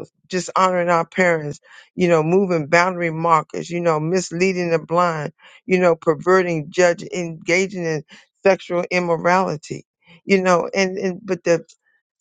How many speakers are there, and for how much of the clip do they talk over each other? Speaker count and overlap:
one, no overlap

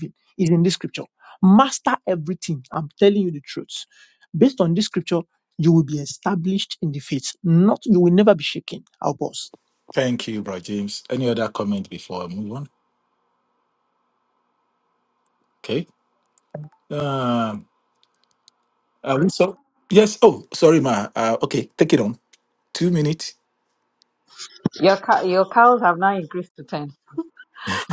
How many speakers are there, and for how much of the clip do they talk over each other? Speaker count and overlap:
three, no overlap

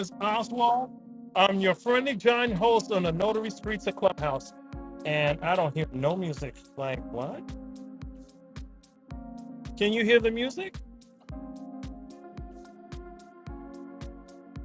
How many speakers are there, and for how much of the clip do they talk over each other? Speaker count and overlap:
one, no overlap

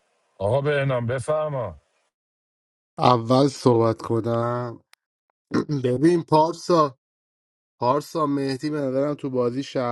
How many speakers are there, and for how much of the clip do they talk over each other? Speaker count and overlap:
two, no overlap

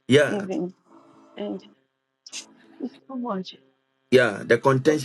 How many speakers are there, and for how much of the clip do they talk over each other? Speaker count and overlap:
two, about 8%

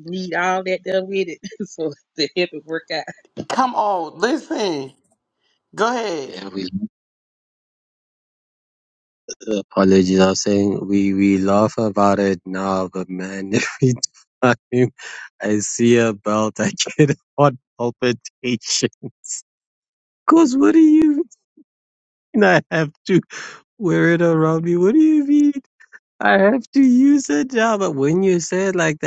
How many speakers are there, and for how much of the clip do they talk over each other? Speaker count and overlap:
three, under 1%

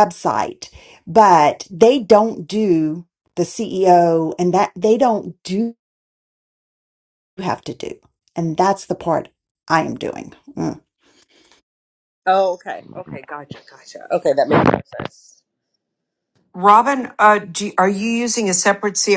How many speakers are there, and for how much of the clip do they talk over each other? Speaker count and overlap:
three, no overlap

